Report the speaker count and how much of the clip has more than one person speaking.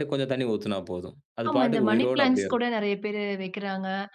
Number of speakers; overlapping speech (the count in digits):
2, about 30%